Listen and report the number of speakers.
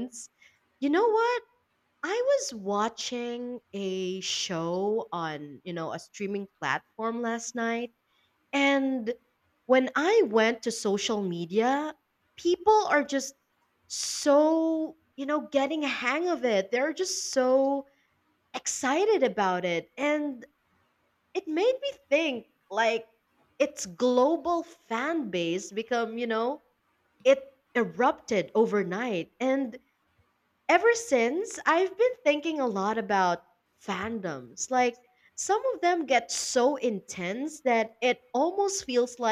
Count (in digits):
1